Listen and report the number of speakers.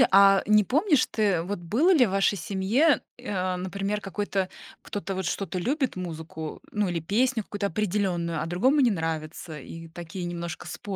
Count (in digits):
1